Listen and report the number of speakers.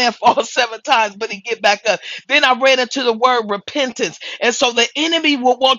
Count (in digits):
1